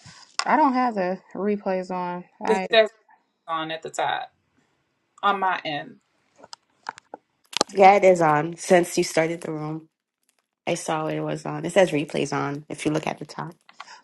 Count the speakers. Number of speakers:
3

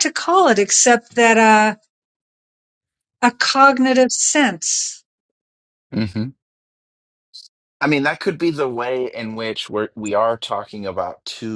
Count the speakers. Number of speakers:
2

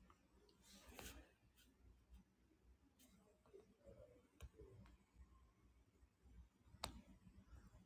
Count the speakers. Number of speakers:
0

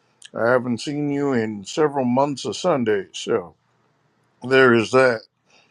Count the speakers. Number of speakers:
1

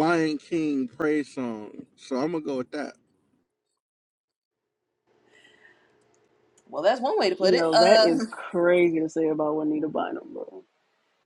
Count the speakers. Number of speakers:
3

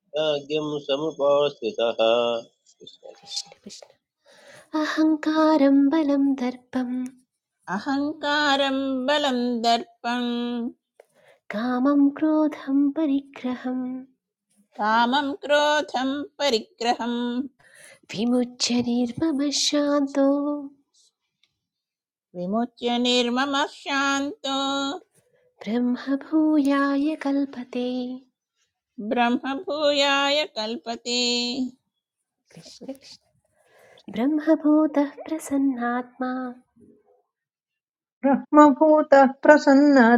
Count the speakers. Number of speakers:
4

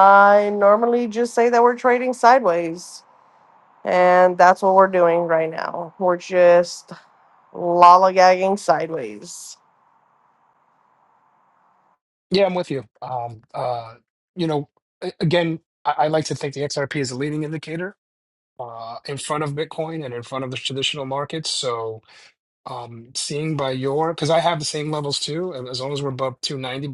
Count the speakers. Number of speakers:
2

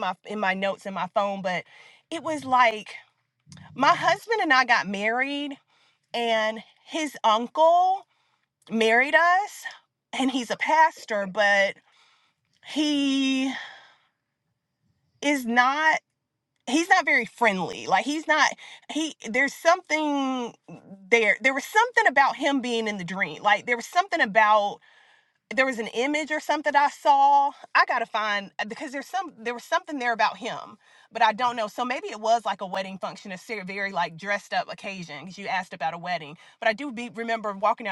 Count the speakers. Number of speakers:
1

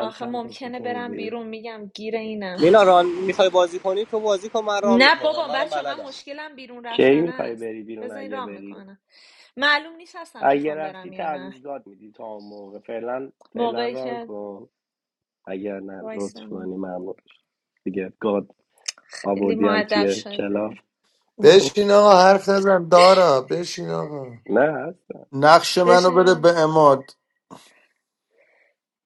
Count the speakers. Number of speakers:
5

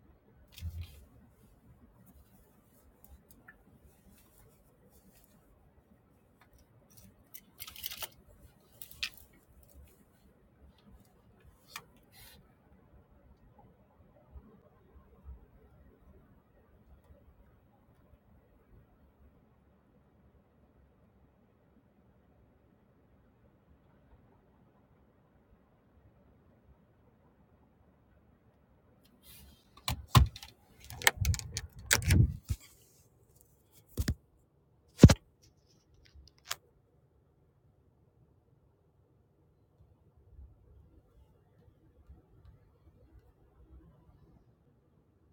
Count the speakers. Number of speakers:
0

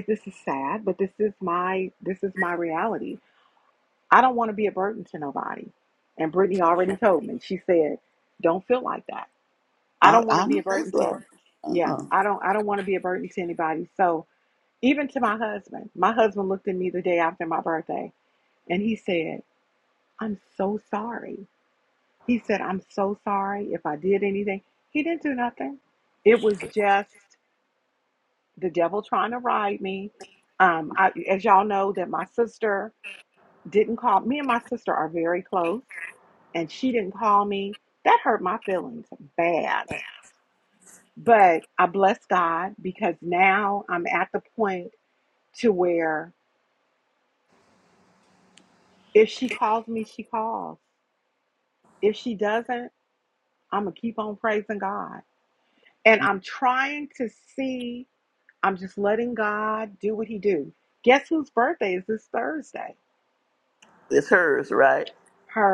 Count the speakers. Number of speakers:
2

